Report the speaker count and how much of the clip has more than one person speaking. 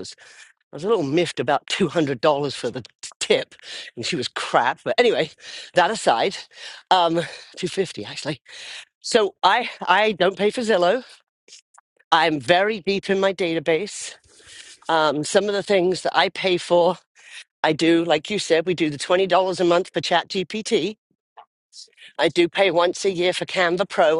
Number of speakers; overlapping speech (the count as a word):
one, no overlap